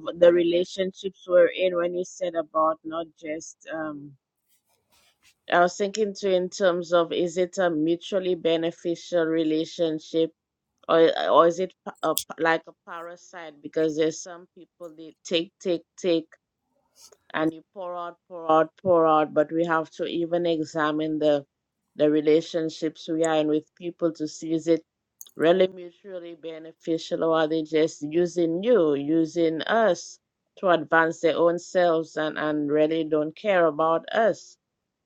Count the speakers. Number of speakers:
one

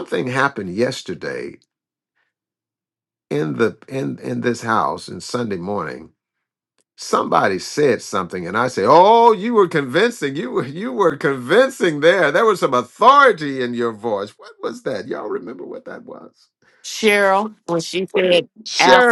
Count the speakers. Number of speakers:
two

